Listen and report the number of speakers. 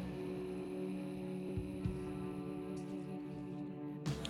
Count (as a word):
zero